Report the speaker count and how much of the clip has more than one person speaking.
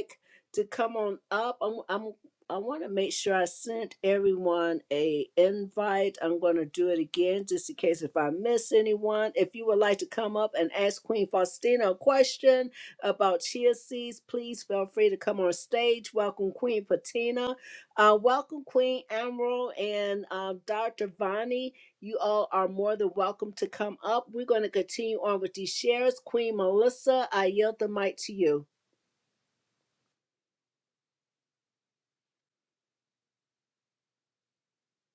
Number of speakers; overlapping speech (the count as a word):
one, no overlap